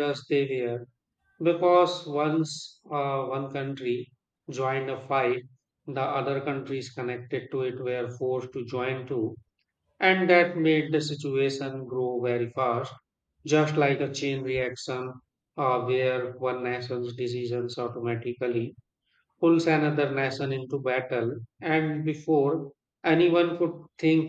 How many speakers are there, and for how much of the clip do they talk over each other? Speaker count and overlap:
1, no overlap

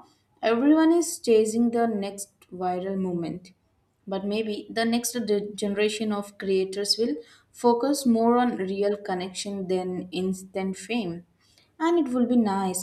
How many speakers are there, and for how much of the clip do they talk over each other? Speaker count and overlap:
1, no overlap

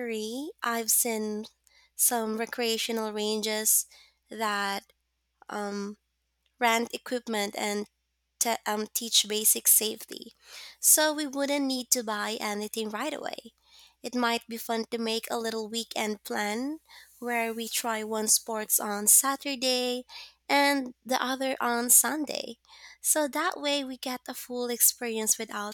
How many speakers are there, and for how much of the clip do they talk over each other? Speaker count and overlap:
1, no overlap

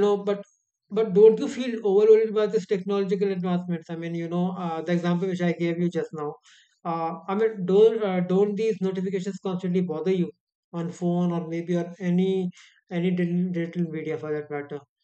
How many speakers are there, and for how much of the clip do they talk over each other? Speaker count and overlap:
1, no overlap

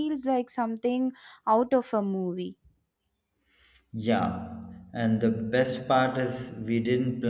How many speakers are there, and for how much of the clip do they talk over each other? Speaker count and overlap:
2, no overlap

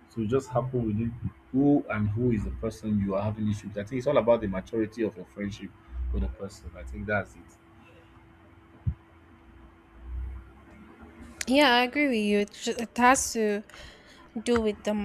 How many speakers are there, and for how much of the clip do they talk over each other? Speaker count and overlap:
2, no overlap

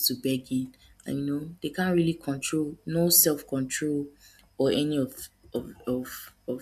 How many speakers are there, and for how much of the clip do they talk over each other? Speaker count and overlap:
1, no overlap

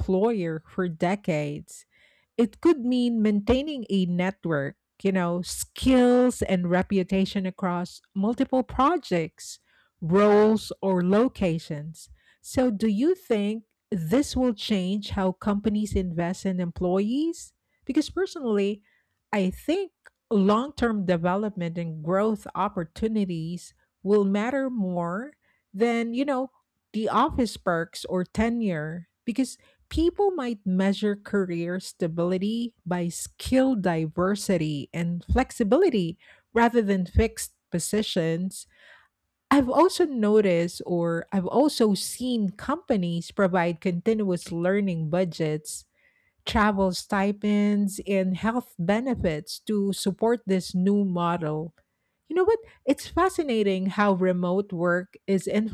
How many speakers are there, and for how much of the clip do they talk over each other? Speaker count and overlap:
1, no overlap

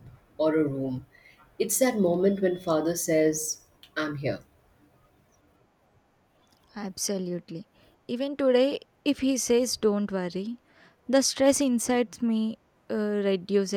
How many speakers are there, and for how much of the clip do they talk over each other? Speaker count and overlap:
2, no overlap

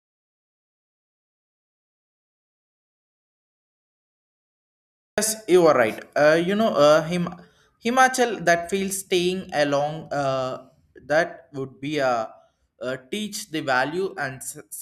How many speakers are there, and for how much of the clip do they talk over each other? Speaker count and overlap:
1, no overlap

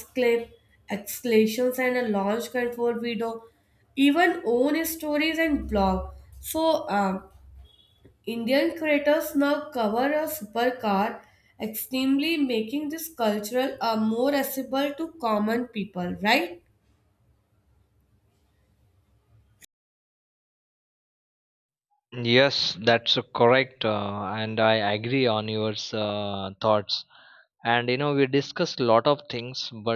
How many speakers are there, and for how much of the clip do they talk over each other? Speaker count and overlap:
2, no overlap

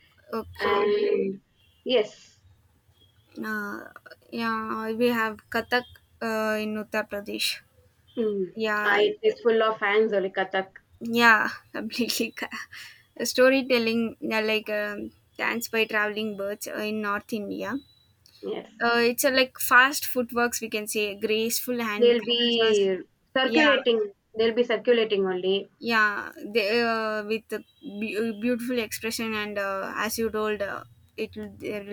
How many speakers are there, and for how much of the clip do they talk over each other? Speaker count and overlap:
2, about 5%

